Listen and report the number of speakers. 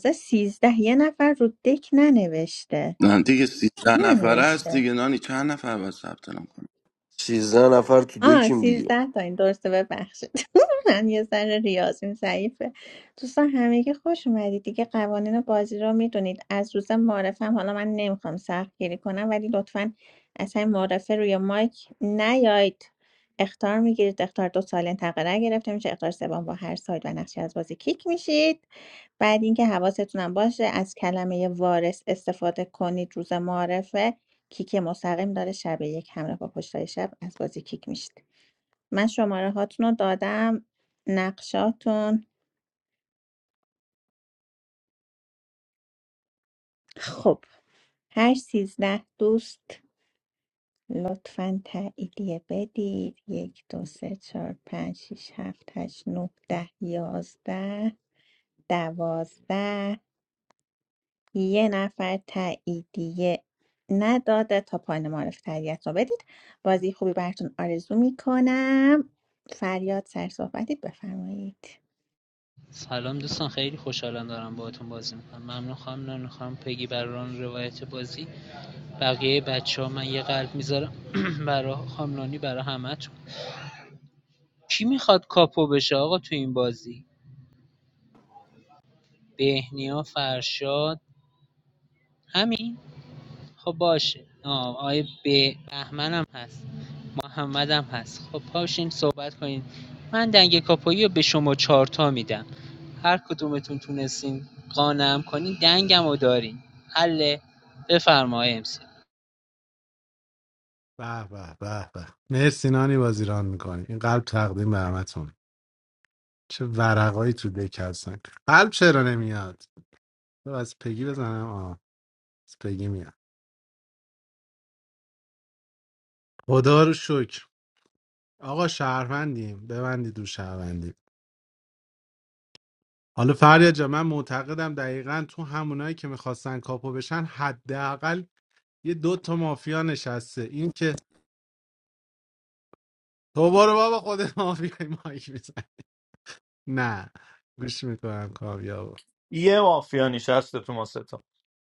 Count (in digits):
6